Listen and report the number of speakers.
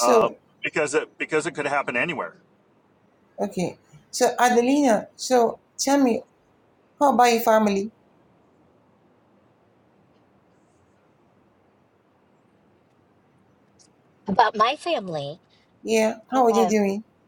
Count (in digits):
3